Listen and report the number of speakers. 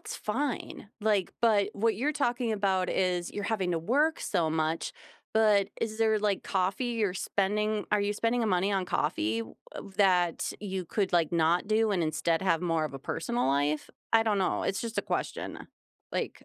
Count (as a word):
one